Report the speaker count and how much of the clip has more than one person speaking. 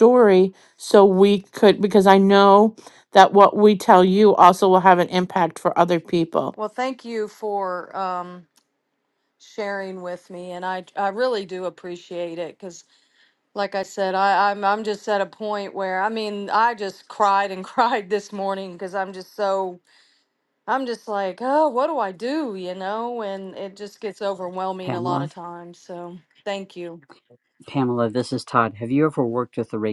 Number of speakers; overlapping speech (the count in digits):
3, about 1%